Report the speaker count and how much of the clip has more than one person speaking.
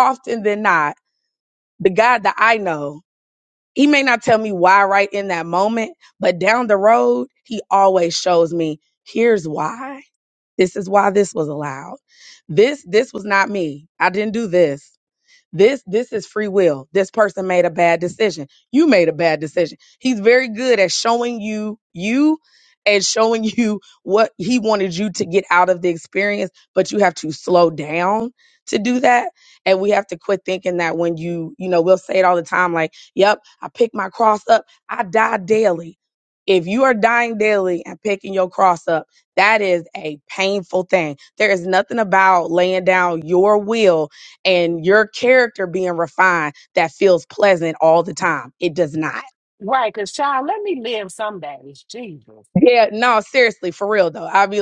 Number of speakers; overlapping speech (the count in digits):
2, no overlap